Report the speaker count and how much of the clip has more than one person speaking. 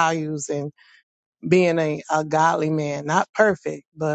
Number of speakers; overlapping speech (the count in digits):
1, no overlap